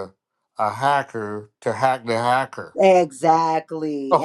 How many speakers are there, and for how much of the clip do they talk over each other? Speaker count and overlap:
two, about 2%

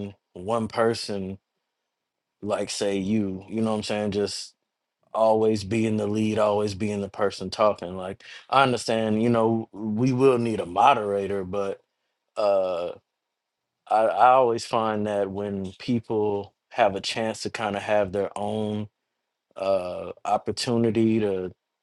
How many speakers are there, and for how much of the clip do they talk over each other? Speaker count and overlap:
one, no overlap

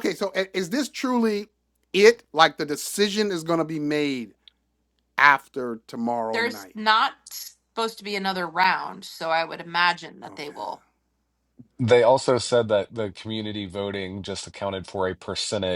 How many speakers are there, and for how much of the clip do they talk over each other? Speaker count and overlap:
three, about 3%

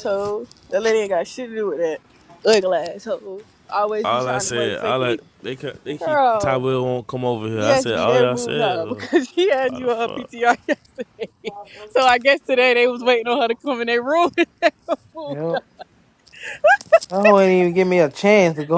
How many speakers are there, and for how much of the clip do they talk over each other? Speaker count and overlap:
three, about 21%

